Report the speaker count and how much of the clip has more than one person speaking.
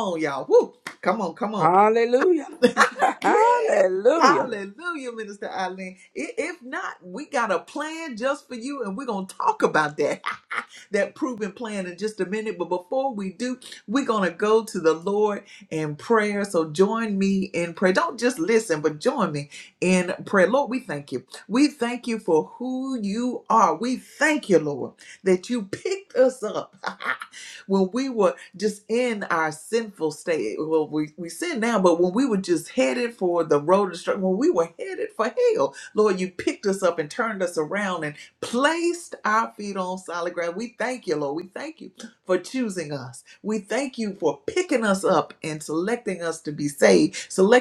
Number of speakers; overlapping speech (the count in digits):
2, about 2%